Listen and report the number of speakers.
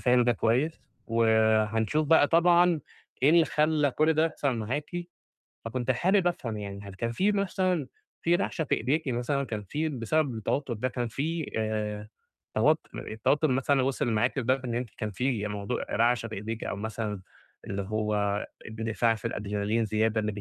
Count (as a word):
one